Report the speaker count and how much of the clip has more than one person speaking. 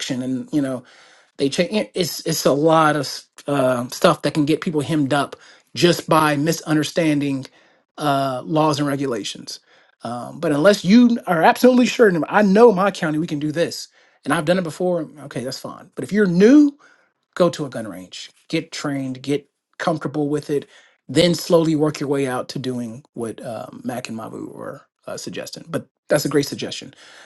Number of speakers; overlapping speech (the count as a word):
one, no overlap